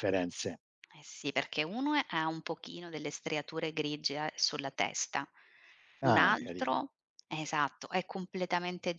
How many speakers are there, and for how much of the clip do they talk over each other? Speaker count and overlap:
2, about 7%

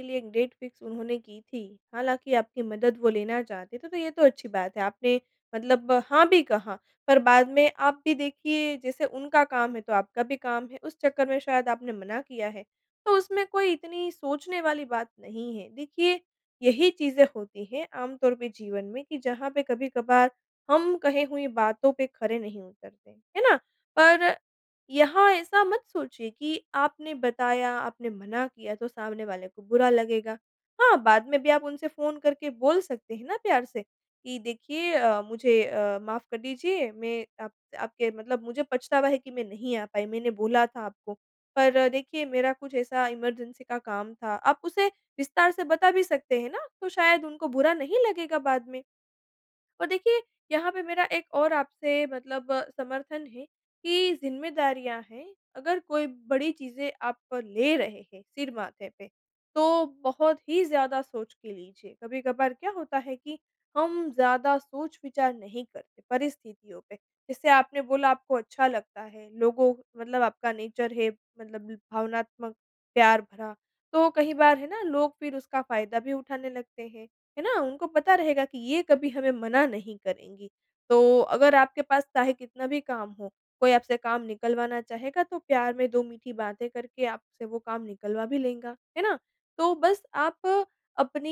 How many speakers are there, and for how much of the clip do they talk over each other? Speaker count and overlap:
1, no overlap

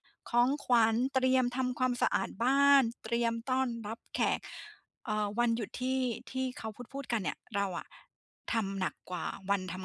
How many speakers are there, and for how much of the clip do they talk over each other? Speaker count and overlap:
1, no overlap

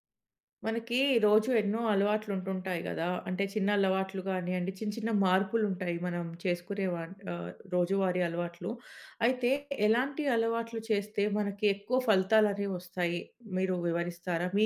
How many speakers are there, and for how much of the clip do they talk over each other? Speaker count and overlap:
1, no overlap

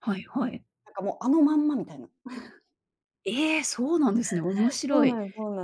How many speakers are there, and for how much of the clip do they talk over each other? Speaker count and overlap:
2, about 6%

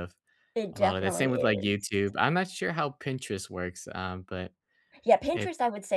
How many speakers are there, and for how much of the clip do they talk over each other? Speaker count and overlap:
2, about 19%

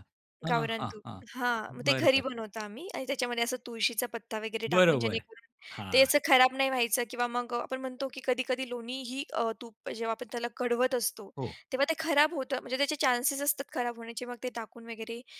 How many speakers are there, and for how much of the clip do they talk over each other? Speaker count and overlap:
2, about 10%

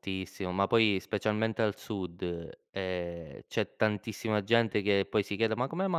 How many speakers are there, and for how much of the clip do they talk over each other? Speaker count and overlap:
1, no overlap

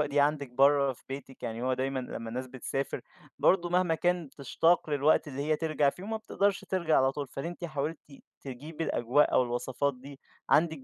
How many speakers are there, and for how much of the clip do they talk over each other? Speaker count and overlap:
1, no overlap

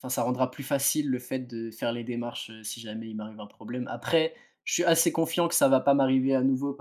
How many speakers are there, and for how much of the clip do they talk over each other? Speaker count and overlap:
1, no overlap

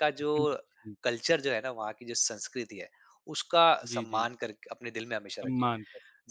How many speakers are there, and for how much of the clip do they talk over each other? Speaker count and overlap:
2, about 11%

